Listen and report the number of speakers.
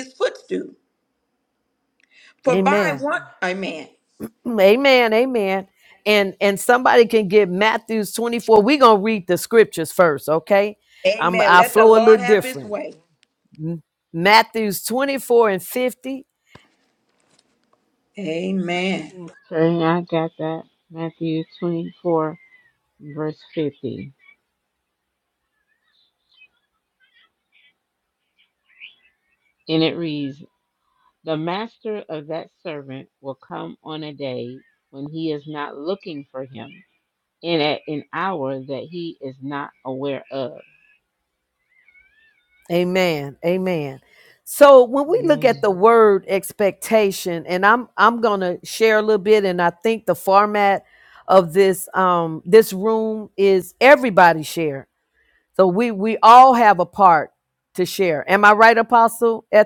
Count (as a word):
three